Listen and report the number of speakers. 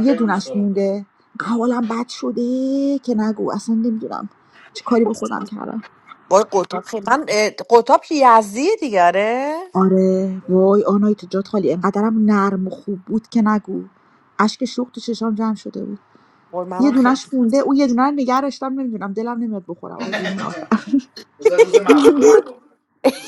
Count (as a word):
three